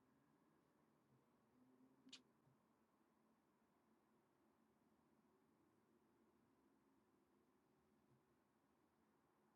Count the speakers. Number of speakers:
0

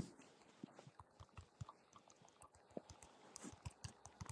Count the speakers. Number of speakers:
0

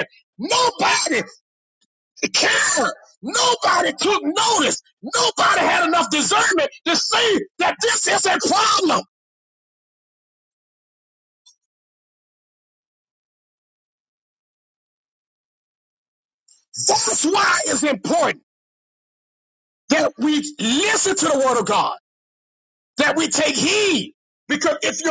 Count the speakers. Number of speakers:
1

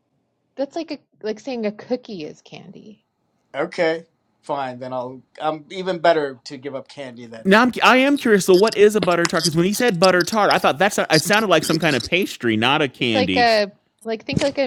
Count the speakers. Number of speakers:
3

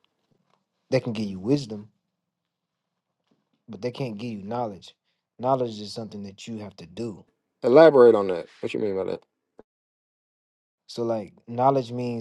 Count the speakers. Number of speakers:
2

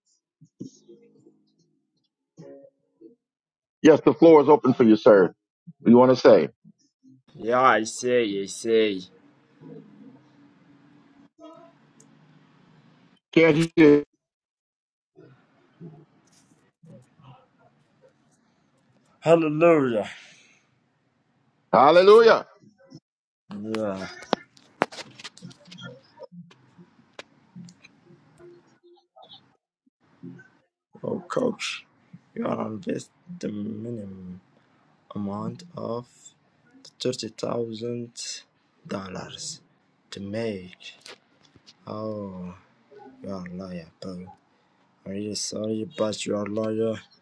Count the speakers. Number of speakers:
2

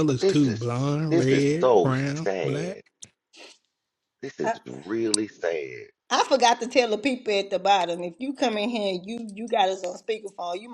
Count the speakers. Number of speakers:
3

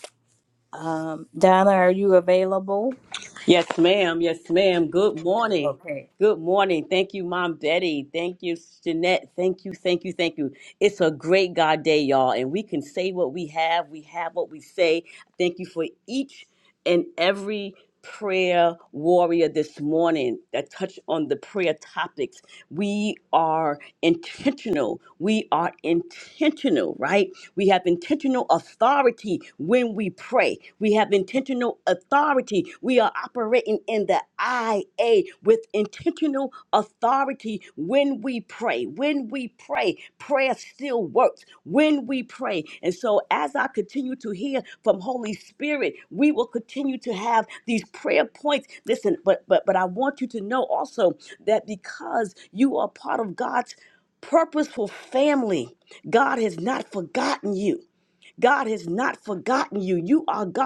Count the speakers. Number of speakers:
2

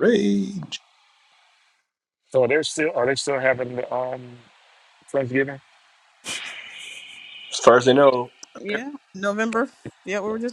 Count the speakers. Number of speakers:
3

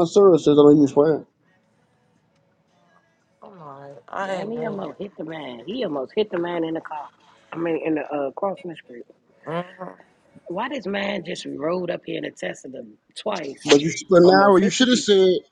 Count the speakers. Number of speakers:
3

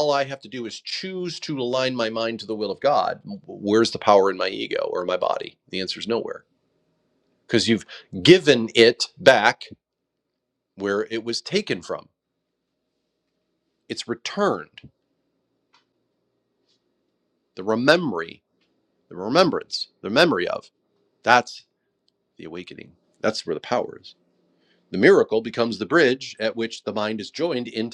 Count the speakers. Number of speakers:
1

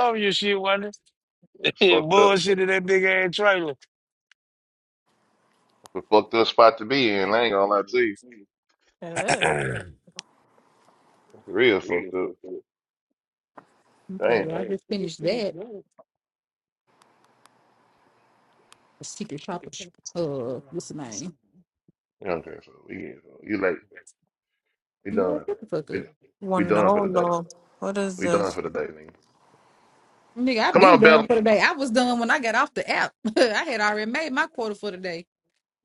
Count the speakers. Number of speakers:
4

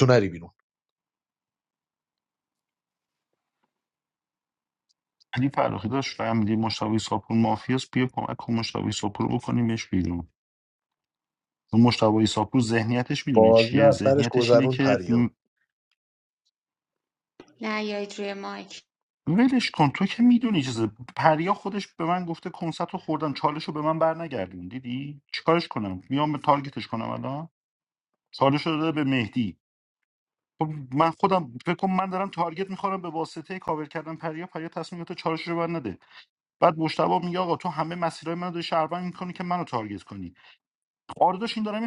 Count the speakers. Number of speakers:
3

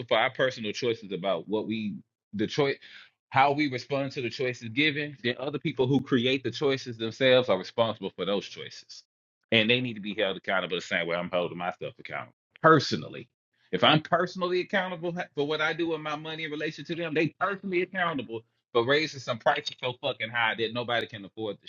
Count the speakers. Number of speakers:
1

